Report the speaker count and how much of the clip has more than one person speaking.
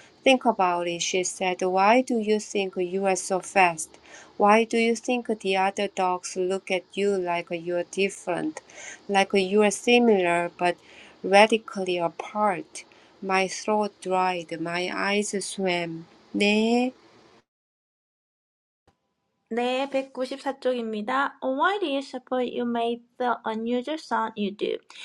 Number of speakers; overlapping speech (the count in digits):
2, no overlap